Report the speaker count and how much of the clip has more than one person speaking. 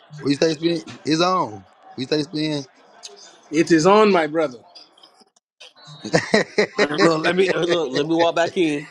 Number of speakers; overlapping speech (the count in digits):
3, about 2%